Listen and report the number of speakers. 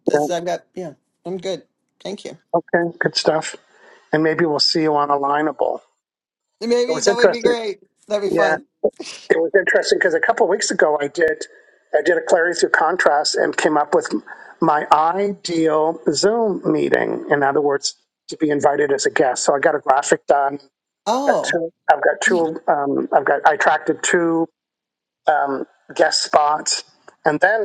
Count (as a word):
two